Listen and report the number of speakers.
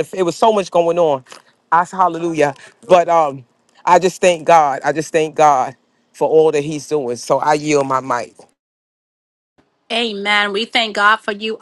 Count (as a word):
two